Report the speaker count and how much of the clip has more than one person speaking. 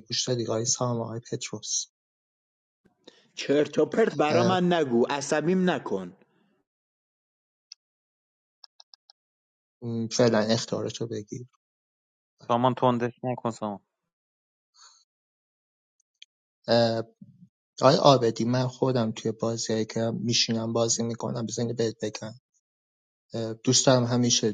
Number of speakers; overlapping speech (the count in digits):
3, about 1%